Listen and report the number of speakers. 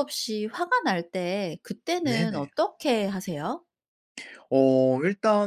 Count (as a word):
two